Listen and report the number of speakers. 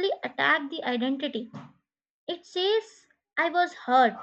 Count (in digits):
1